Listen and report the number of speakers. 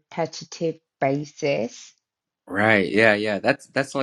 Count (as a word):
two